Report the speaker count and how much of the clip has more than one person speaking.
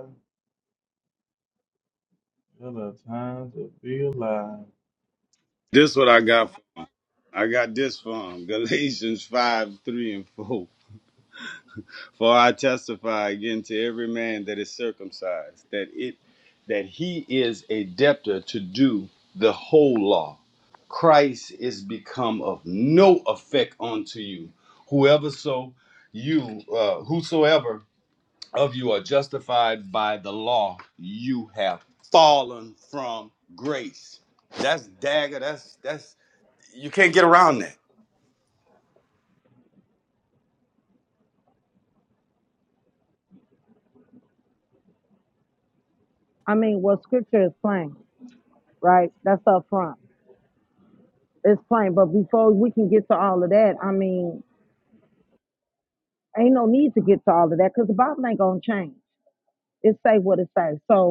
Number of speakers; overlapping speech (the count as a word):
three, no overlap